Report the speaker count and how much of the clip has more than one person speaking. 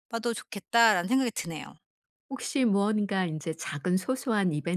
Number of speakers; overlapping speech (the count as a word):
two, no overlap